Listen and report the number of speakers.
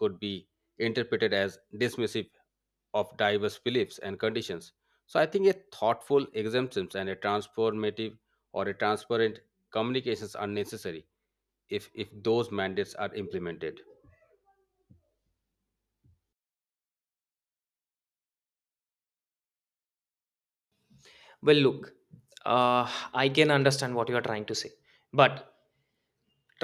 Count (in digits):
2